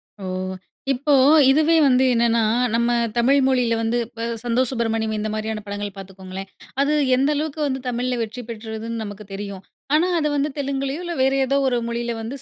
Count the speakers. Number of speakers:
one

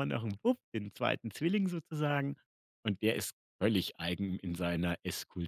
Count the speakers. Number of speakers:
one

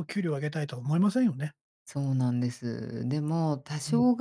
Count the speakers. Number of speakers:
two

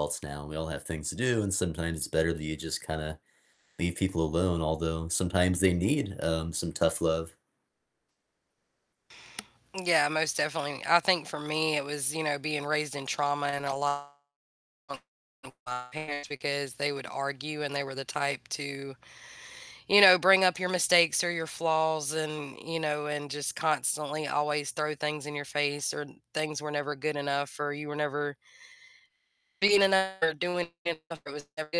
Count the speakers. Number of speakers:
two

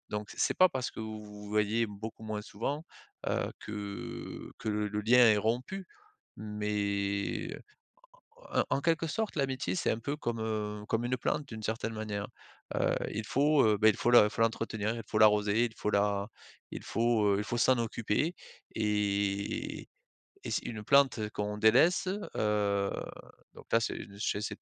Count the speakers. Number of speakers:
one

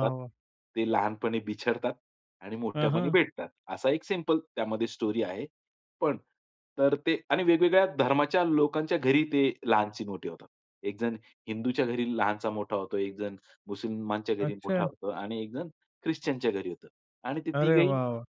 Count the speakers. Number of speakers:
two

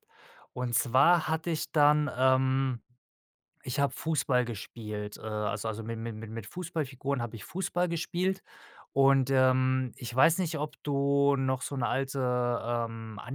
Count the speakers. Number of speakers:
one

